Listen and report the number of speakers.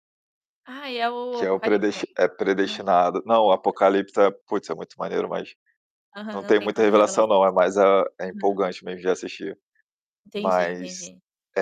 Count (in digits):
2